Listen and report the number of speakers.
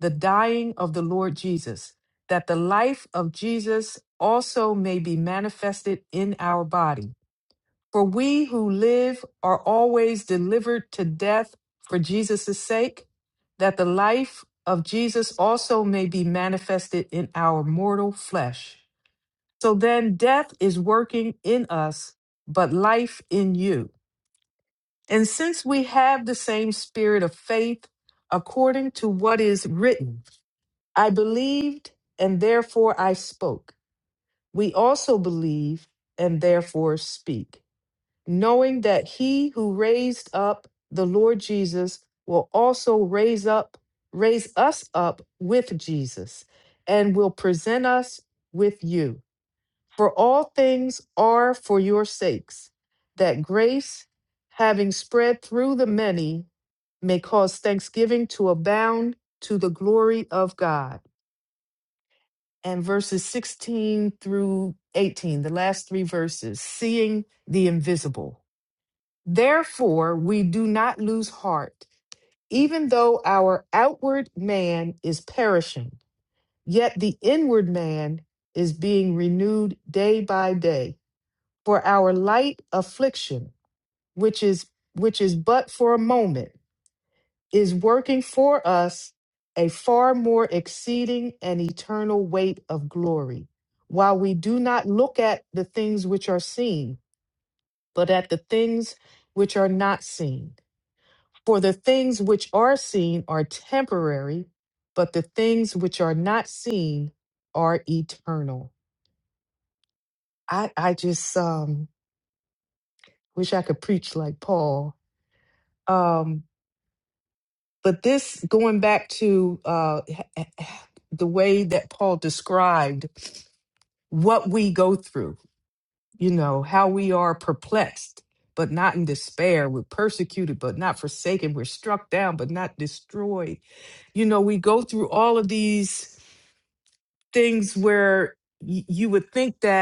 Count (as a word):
one